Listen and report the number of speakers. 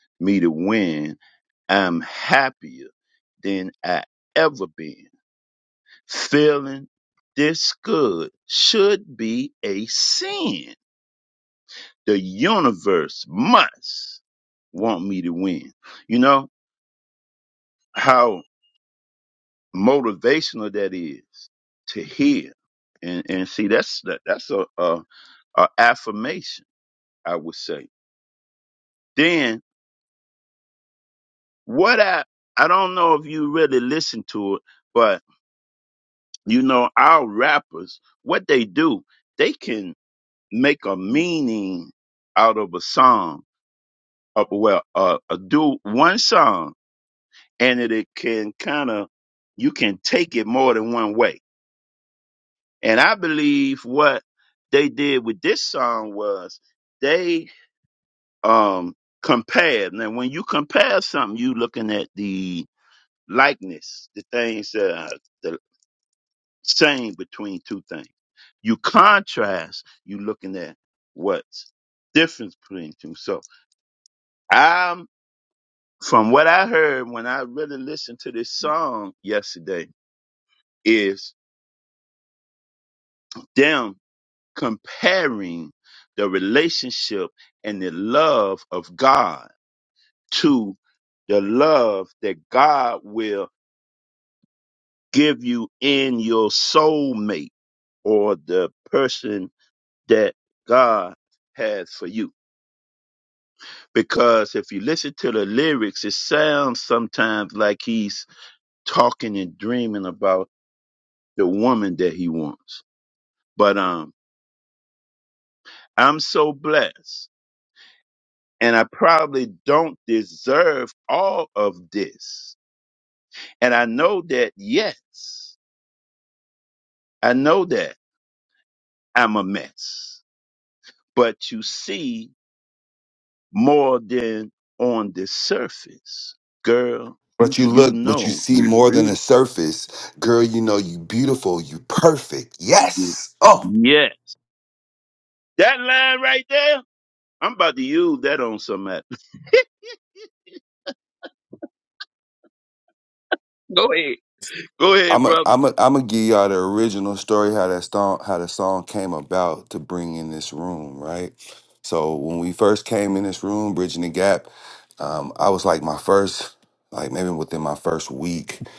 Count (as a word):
two